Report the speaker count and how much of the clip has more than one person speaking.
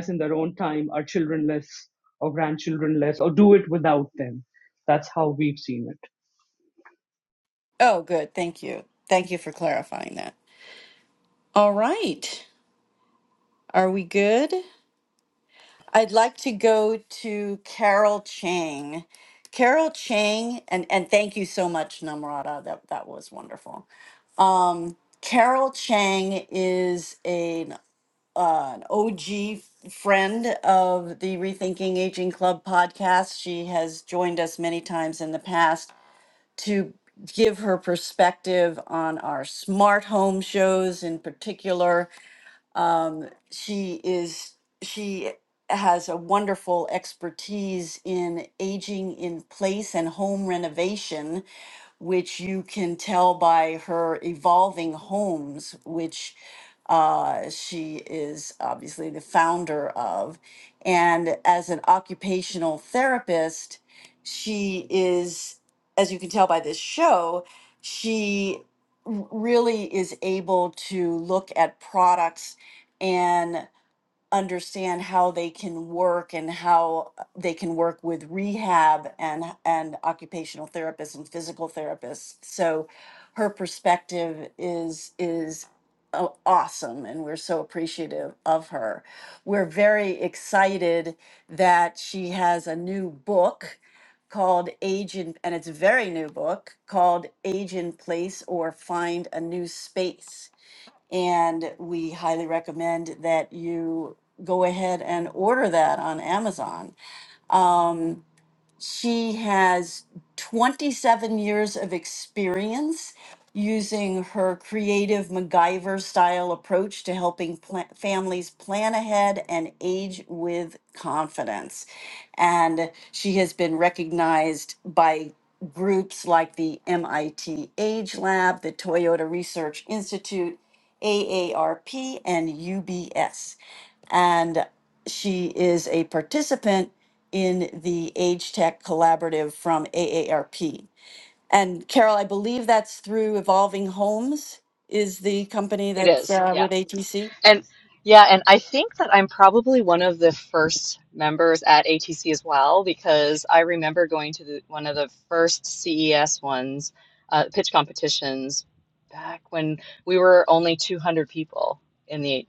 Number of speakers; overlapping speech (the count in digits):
3, under 1%